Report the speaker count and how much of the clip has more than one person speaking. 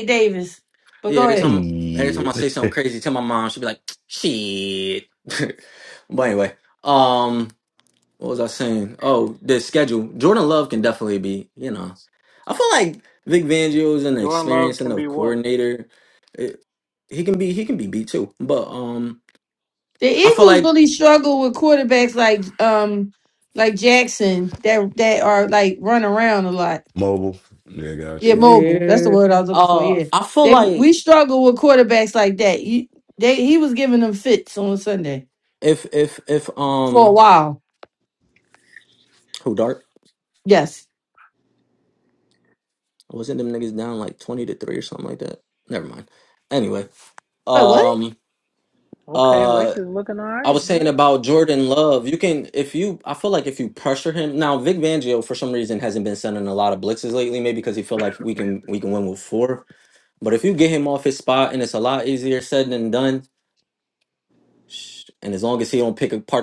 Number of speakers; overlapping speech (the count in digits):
4, about 10%